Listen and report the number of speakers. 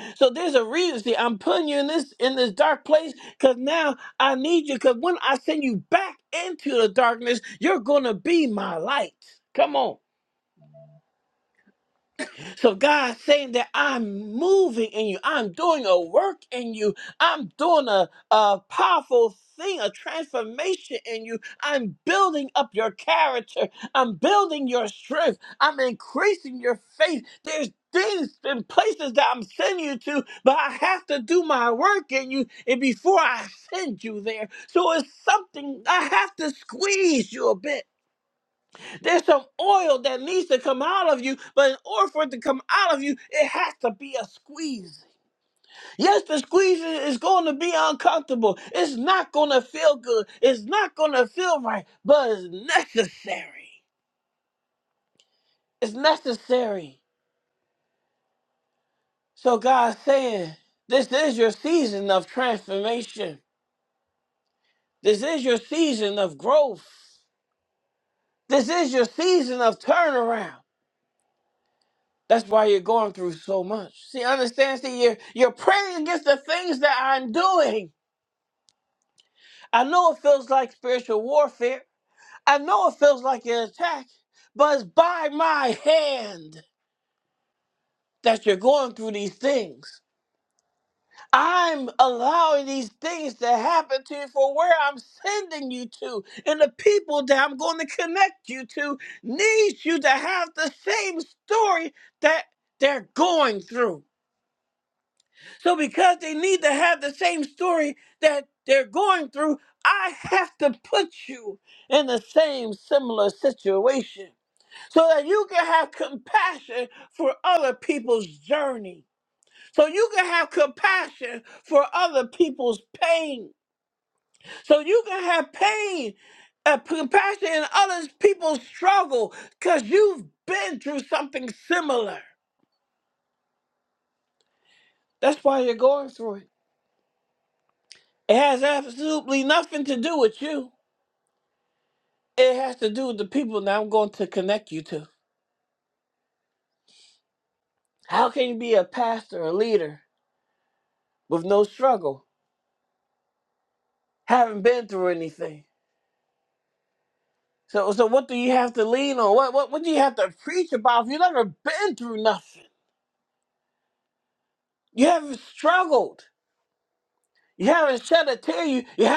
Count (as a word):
one